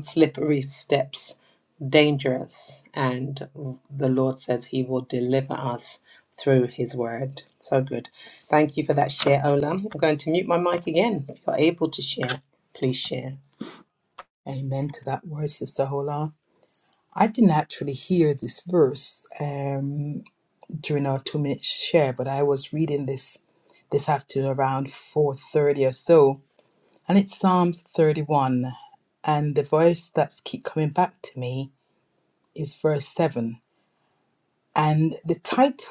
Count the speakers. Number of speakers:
2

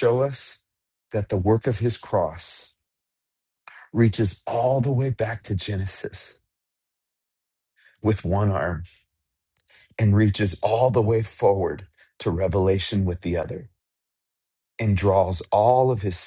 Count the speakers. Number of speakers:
1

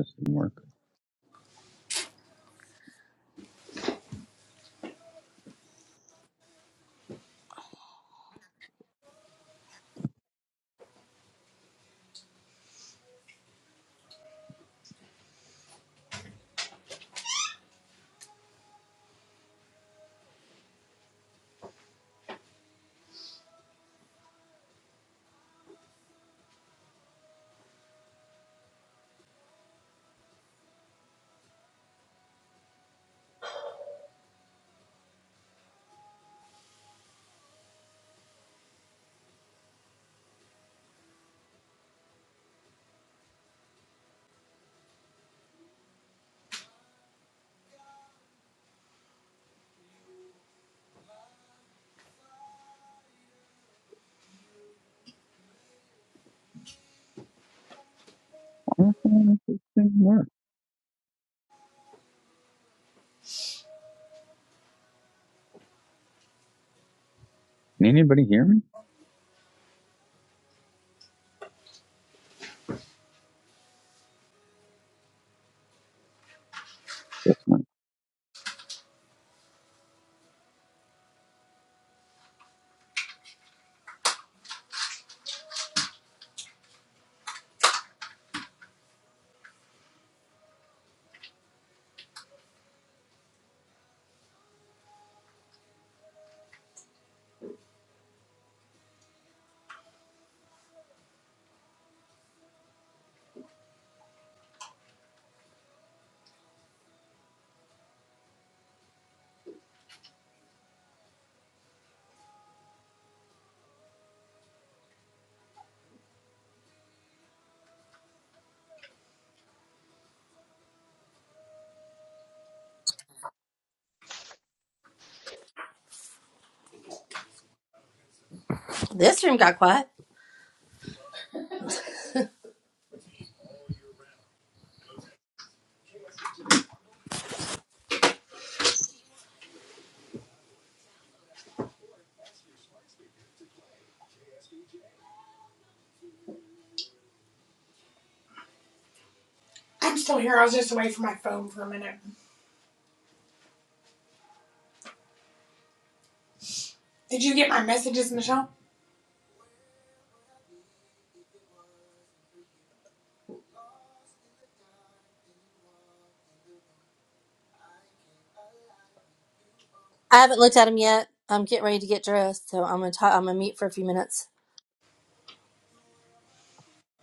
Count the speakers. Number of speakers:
3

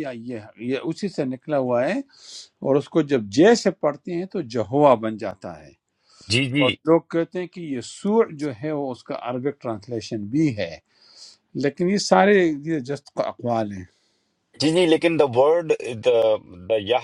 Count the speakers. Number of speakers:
2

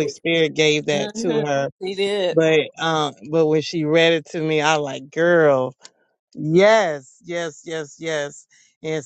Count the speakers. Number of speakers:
2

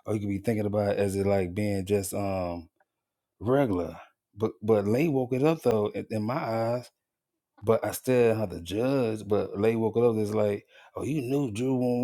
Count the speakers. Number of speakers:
1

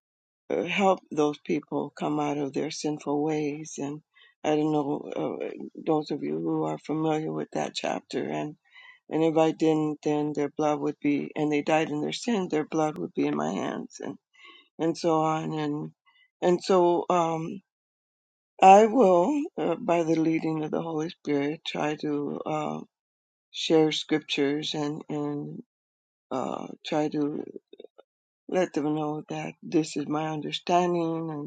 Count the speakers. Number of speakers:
1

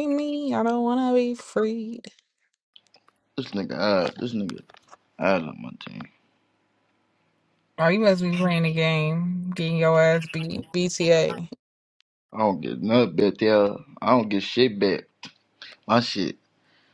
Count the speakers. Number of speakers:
2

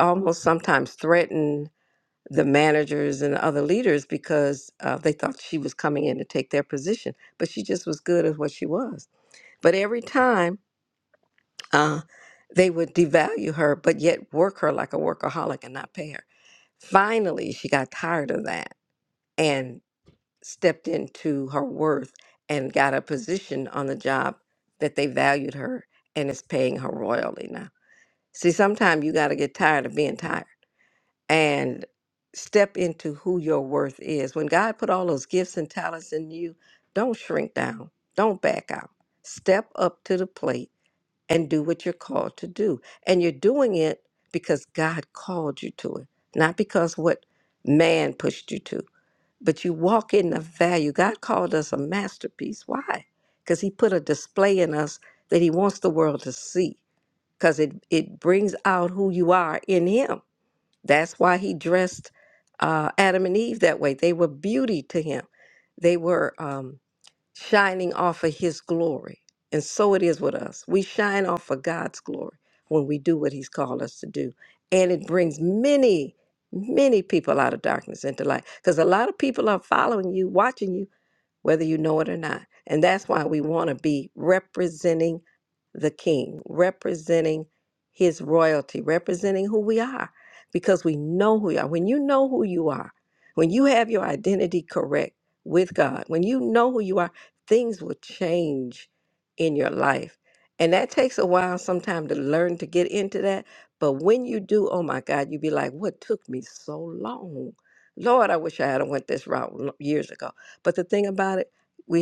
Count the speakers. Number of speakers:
1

